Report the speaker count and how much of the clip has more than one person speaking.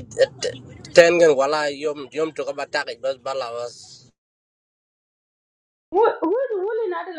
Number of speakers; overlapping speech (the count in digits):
2, no overlap